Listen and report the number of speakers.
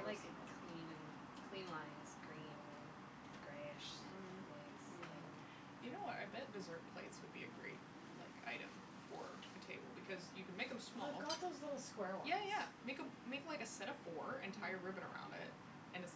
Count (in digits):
3